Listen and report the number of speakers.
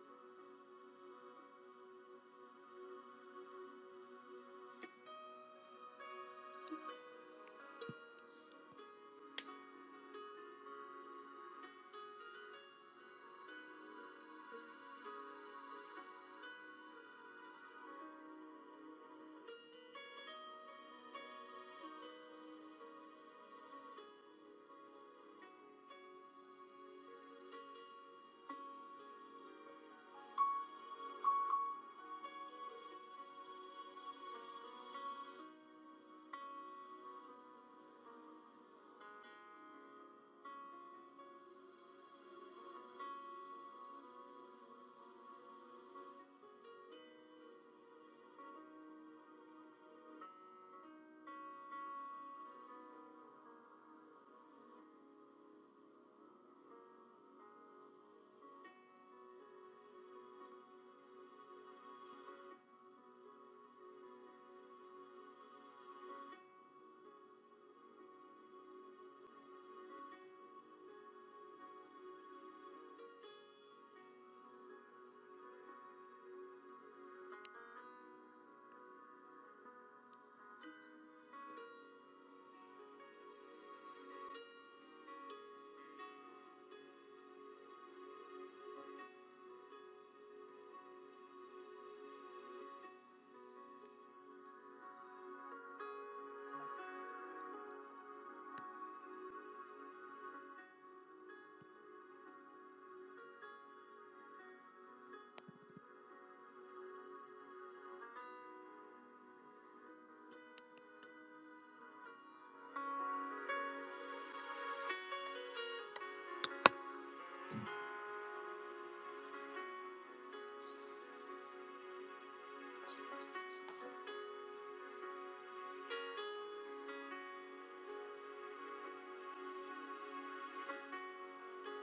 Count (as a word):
zero